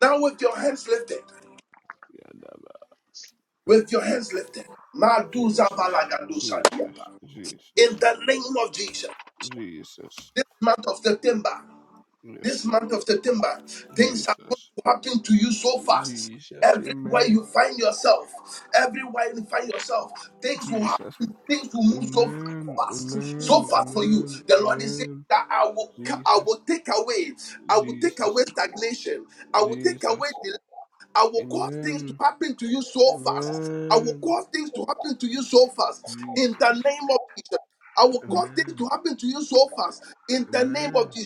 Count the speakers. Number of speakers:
2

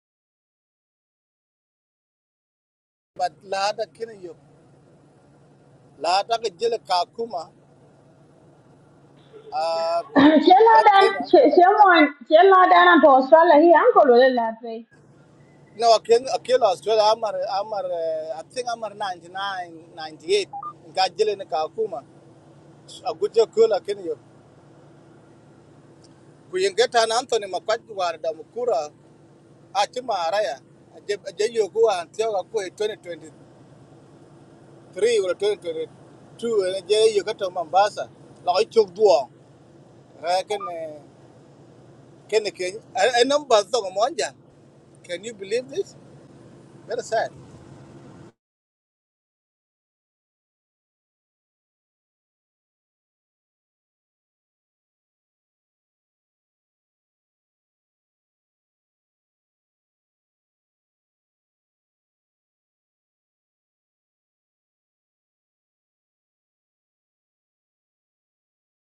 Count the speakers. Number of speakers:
2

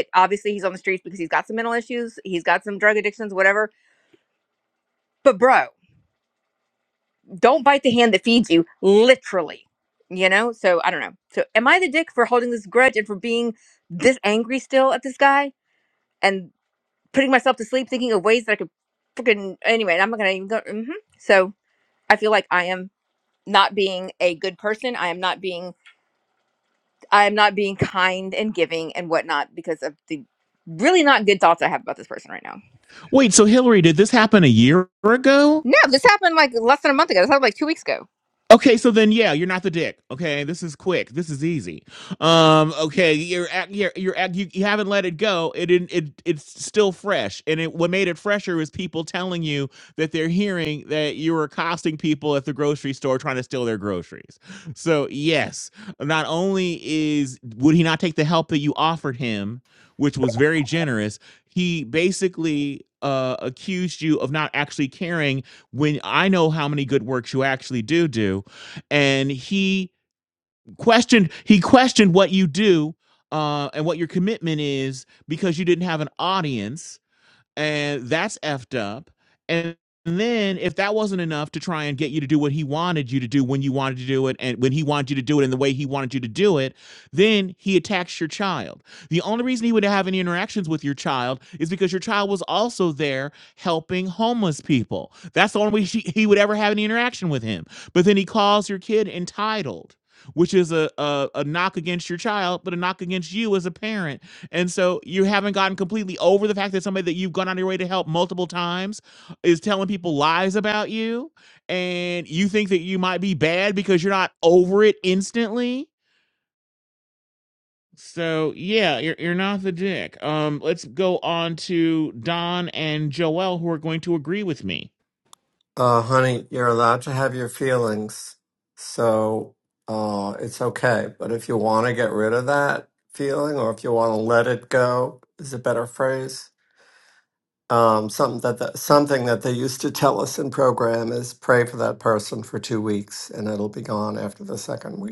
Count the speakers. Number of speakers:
3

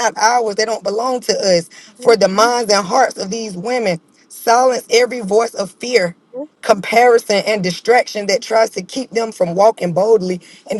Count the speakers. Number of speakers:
1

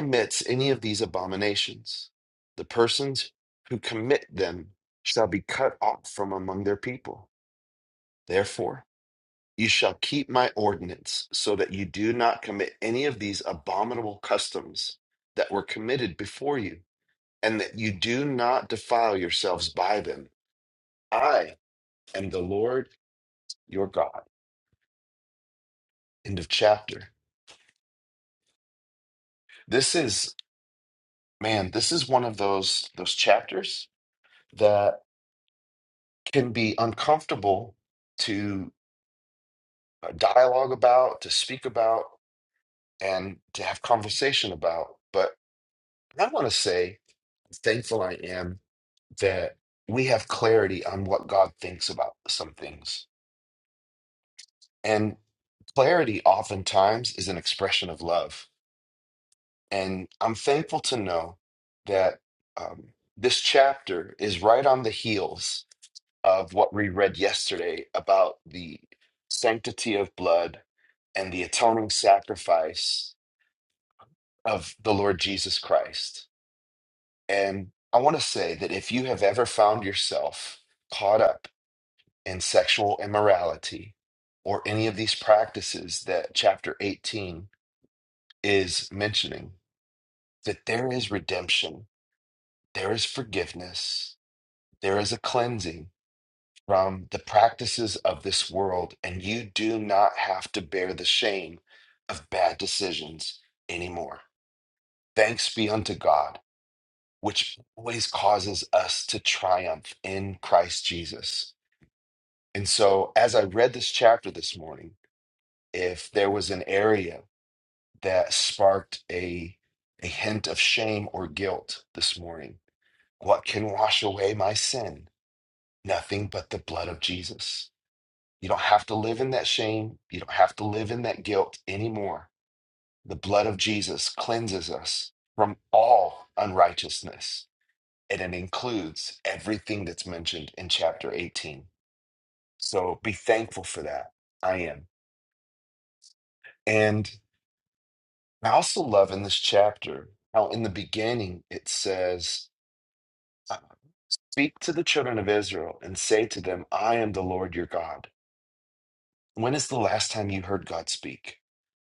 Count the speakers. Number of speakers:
1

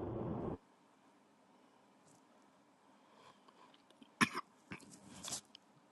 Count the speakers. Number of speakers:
0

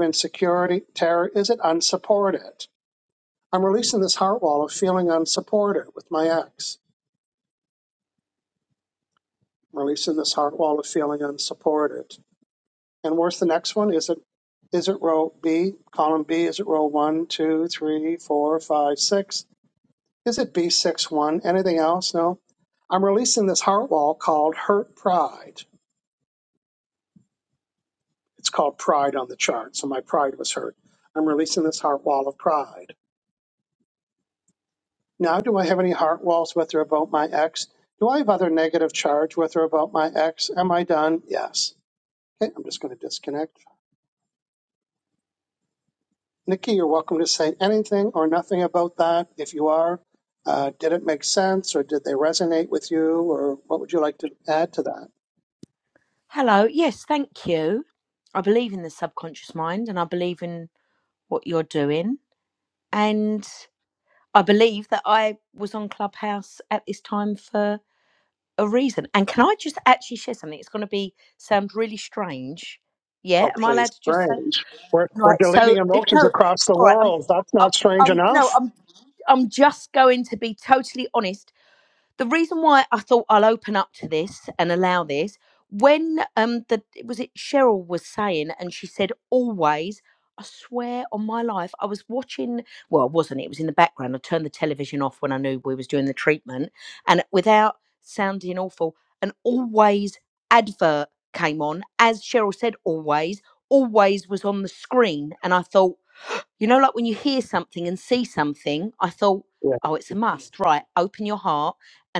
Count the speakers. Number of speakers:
2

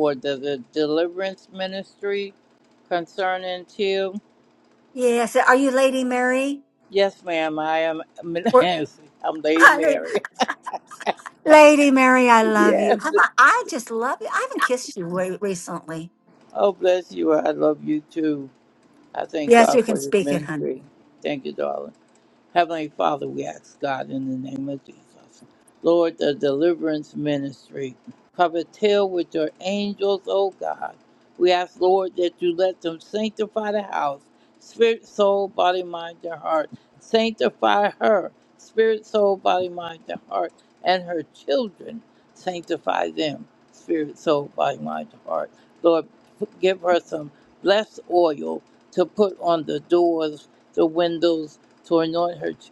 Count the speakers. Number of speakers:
2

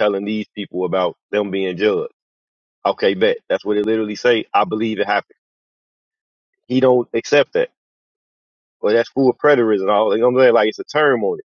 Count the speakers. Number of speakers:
1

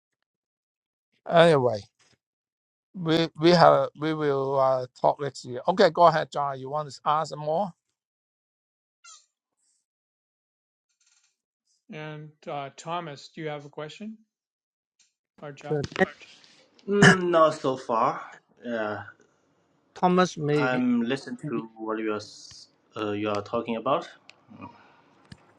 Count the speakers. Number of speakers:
4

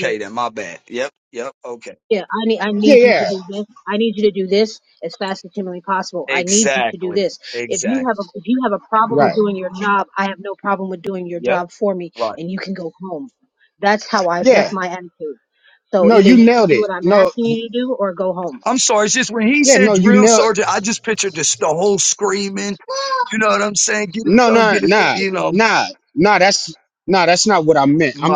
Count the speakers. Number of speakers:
3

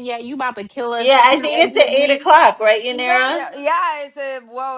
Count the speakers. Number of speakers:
3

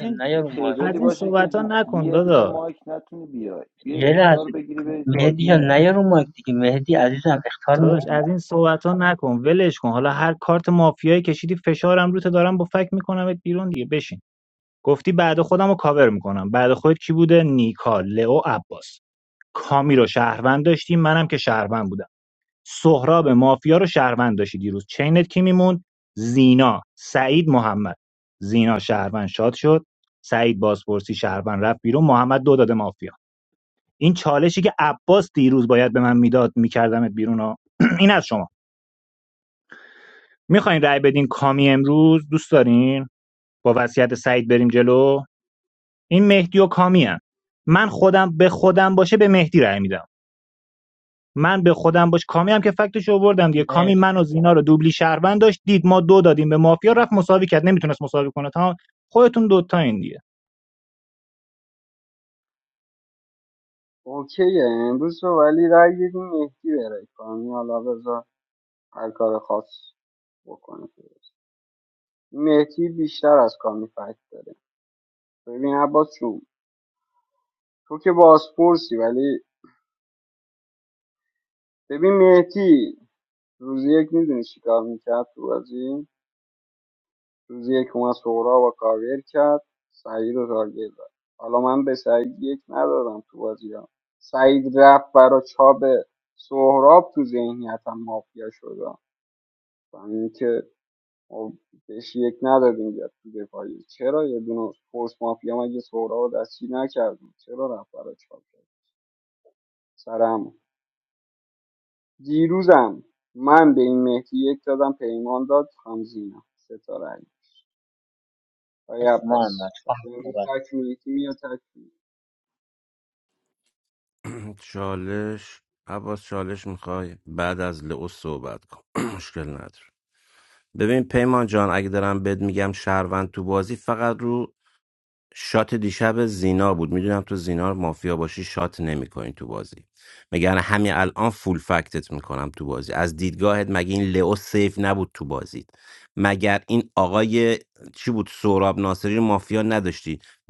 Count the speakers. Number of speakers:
5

